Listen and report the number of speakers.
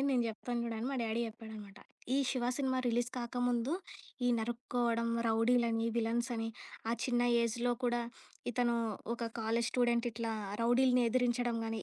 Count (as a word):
one